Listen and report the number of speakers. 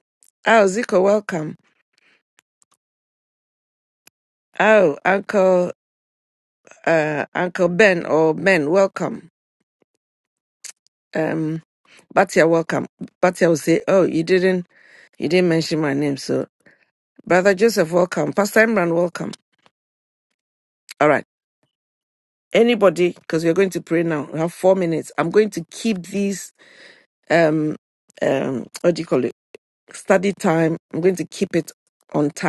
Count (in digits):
1